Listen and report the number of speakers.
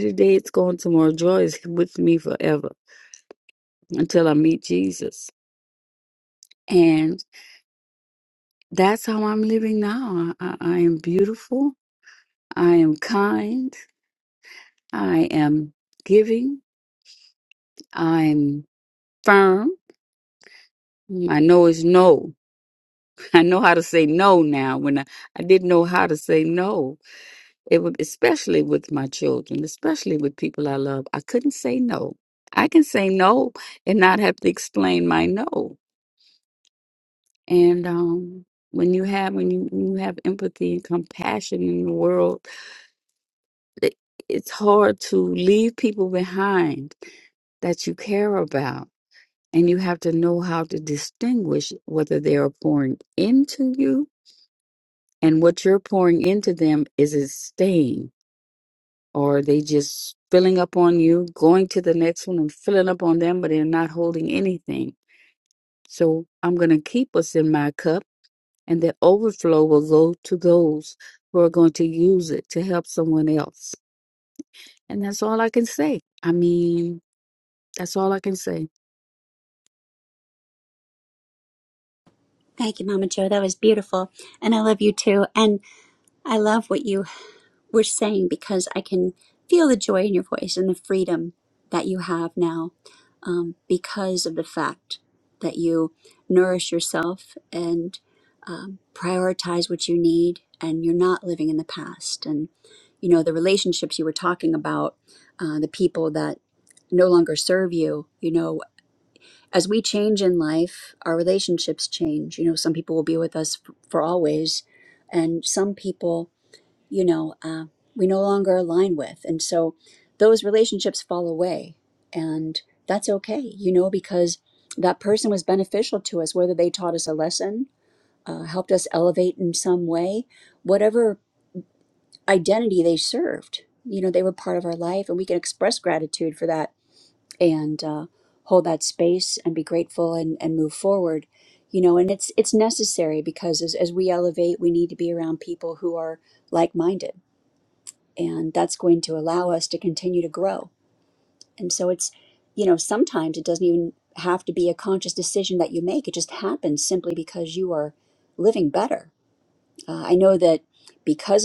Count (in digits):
2